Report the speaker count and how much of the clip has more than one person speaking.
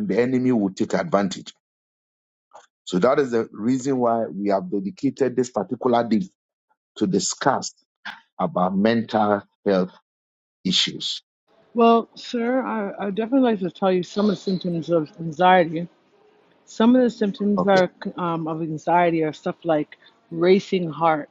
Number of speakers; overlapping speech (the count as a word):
two, about 1%